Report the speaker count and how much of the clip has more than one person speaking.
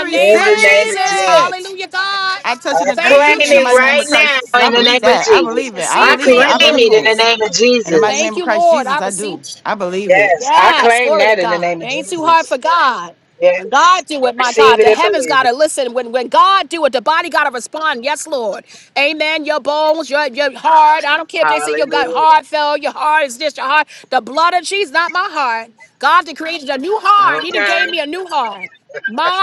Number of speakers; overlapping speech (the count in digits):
3, about 43%